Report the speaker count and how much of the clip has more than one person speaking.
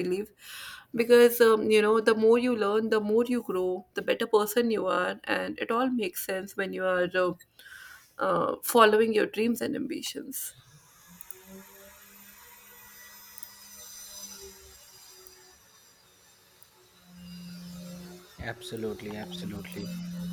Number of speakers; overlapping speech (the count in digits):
2, no overlap